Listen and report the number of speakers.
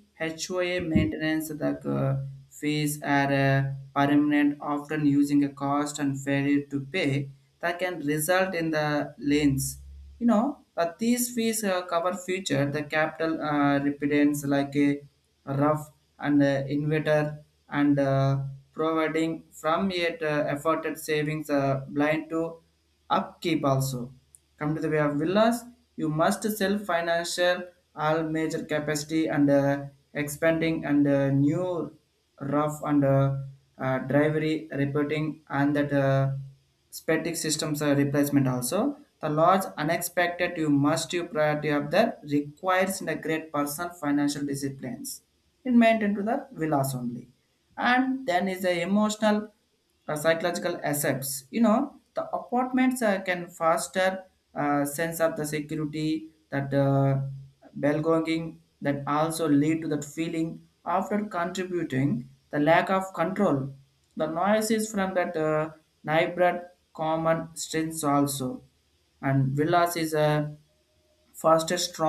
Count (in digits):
1